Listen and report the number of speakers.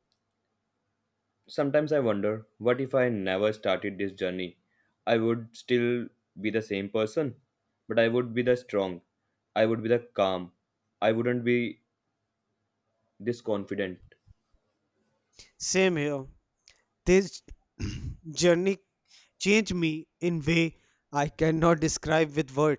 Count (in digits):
2